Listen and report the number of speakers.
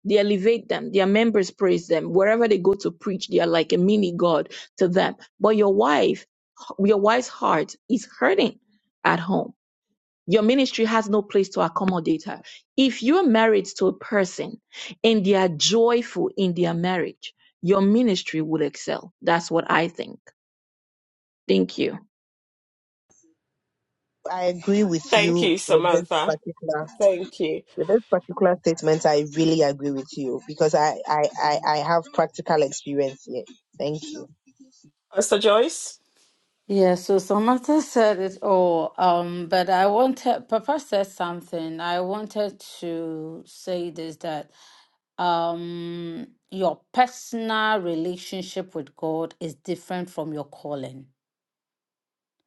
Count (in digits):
4